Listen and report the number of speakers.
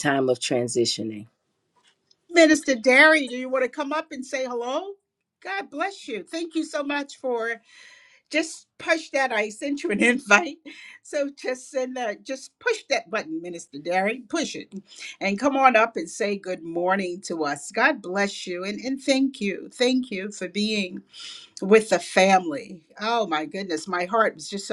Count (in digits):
2